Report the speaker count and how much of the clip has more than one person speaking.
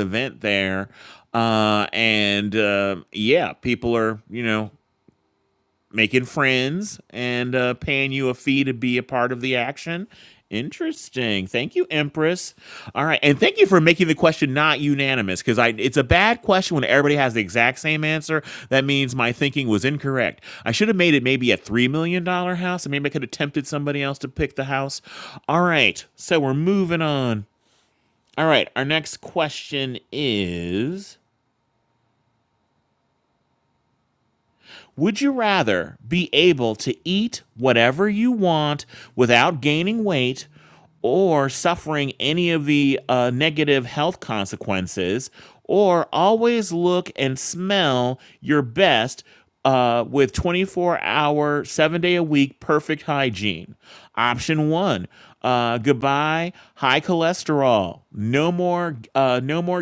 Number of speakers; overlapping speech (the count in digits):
1, no overlap